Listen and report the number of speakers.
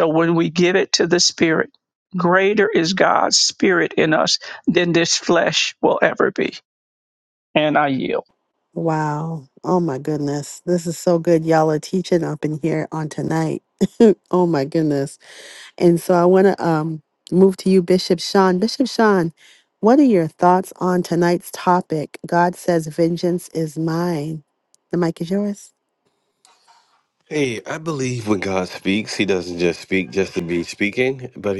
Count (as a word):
three